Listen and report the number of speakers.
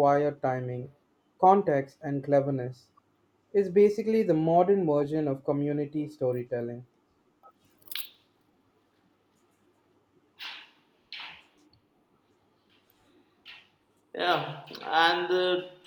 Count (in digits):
2